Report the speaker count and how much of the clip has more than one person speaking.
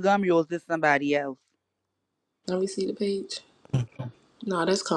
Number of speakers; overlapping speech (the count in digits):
2, no overlap